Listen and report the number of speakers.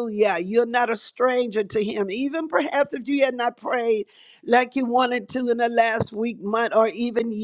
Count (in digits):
1